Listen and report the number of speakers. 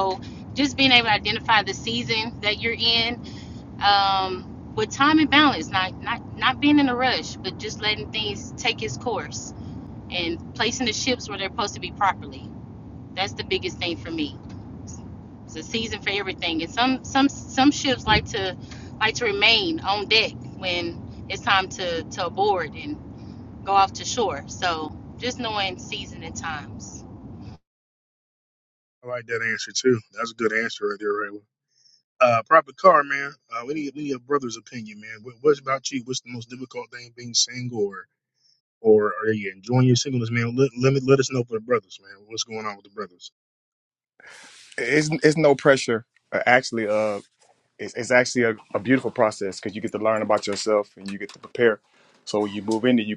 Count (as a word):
three